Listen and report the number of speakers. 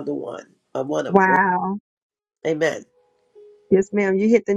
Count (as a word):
two